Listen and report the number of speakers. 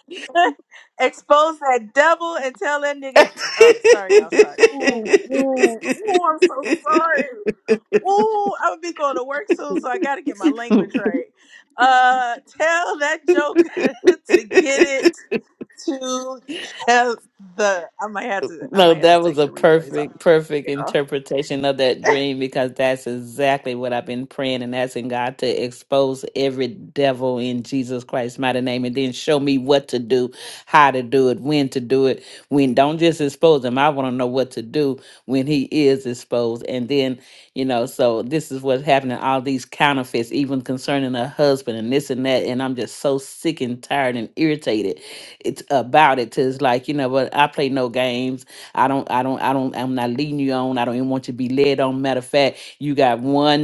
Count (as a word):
two